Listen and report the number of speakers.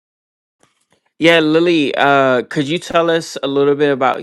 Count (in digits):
1